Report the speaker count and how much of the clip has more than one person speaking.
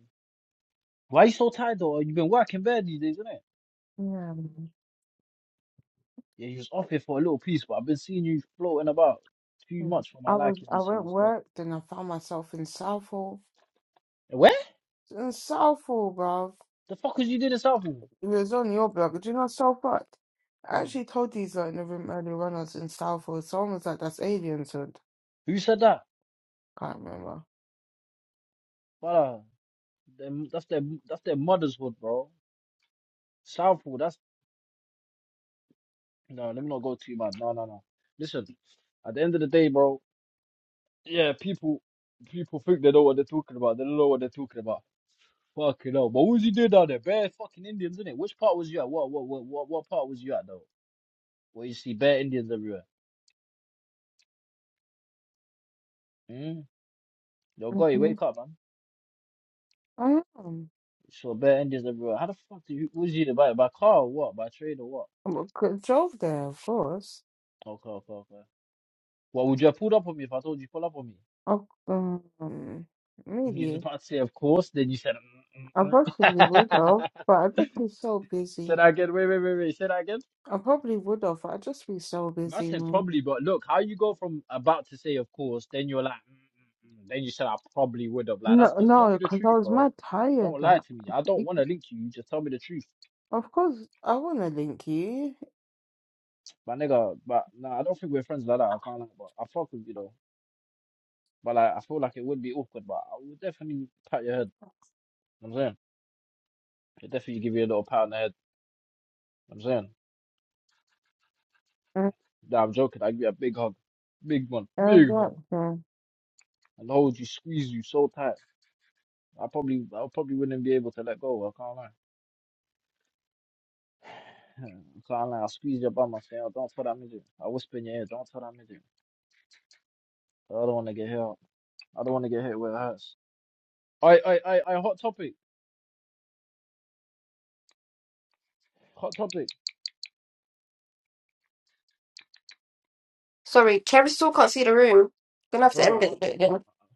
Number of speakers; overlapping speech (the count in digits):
3, about 5%